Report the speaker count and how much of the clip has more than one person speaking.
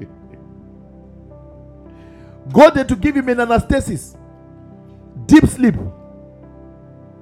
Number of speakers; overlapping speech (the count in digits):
1, no overlap